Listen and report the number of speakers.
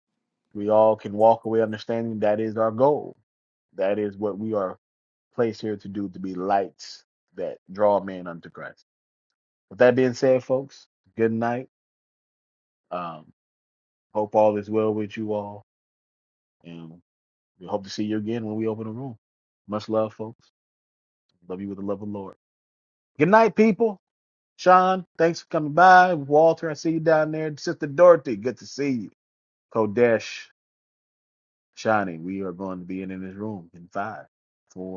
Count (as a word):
one